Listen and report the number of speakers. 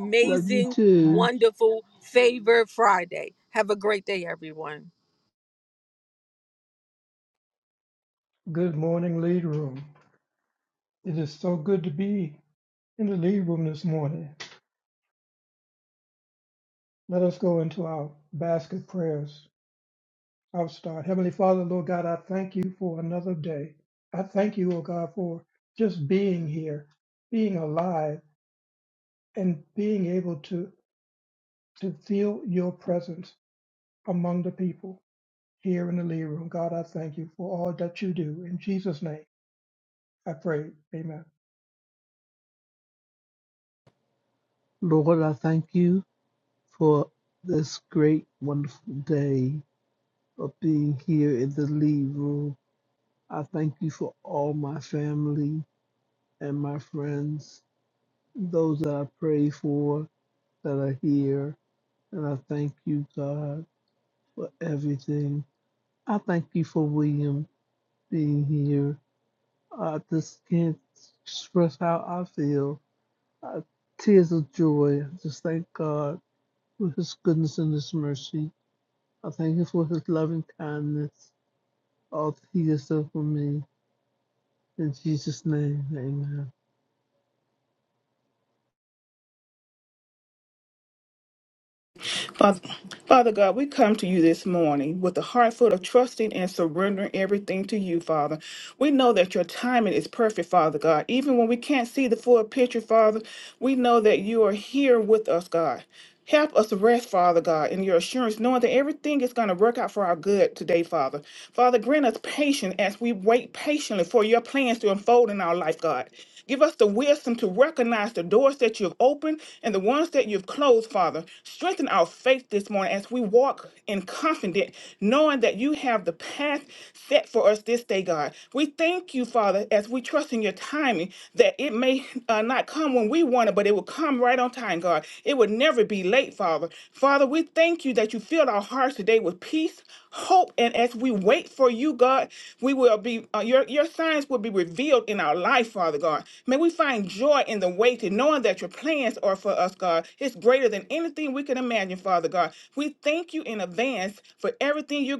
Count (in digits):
4